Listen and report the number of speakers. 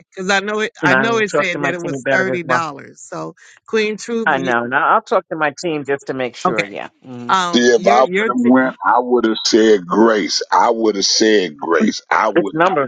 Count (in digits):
3